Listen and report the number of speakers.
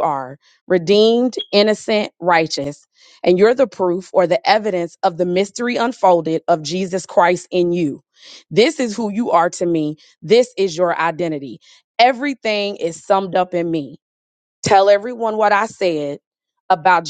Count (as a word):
one